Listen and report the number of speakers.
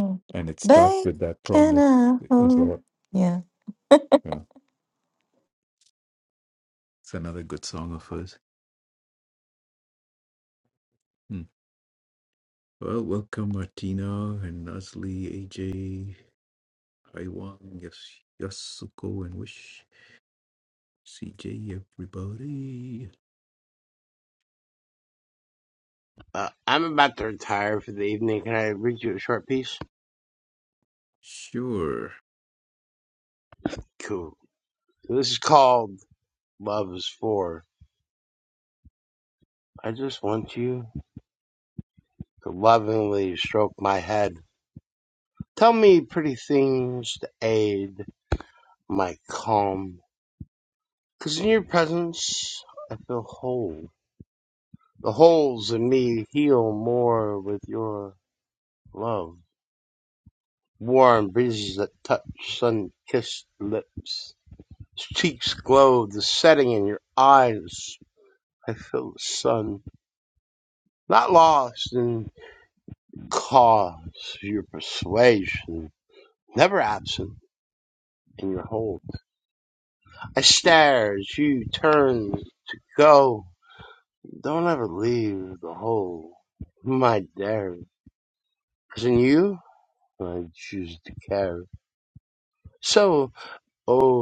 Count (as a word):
three